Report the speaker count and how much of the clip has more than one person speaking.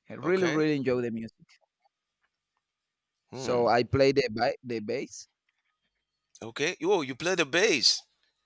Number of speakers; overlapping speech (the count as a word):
two, about 8%